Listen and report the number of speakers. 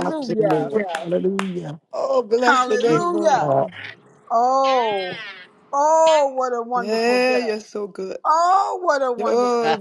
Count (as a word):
three